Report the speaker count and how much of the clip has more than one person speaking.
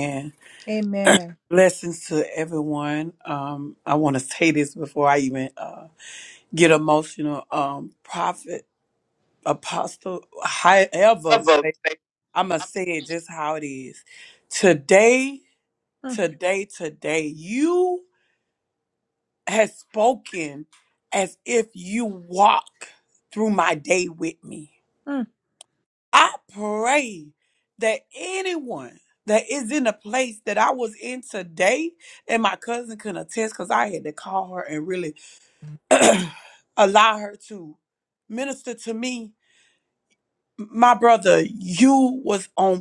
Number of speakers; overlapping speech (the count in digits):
2, under 1%